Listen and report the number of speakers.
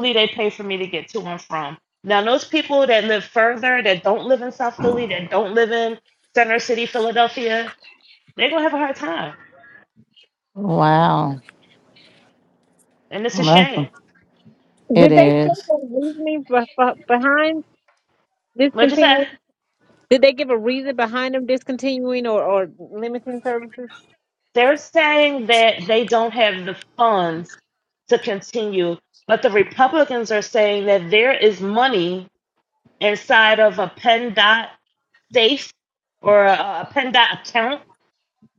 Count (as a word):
three